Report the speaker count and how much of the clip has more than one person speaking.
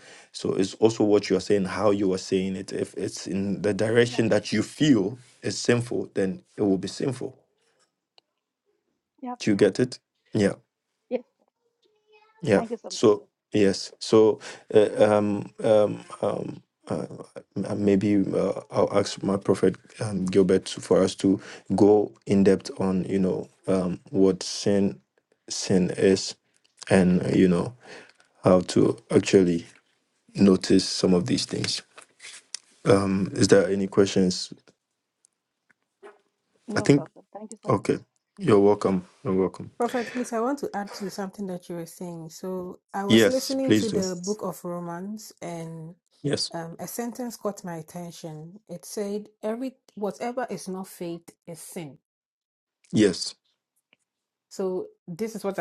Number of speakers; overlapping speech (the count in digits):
3, about 4%